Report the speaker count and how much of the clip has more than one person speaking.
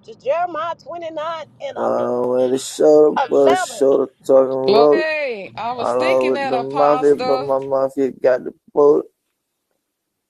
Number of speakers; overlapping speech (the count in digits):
3, about 25%